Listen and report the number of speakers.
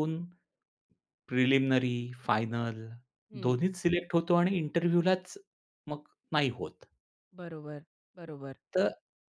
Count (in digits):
2